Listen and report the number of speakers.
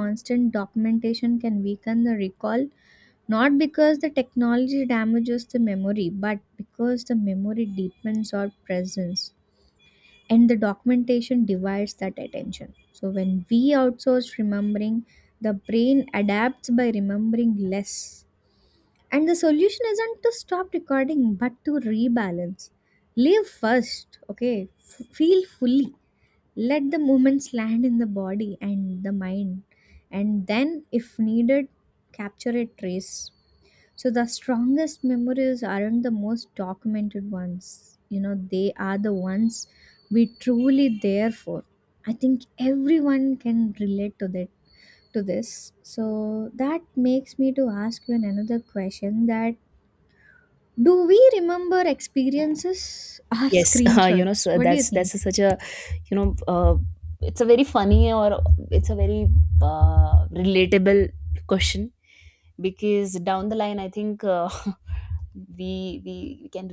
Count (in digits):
2